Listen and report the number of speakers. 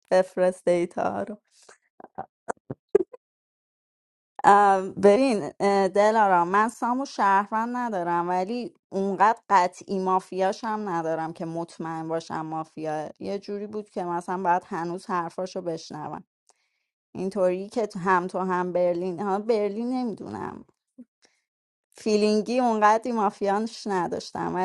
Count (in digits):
1